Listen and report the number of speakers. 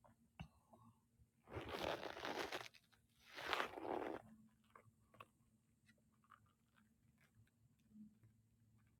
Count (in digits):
0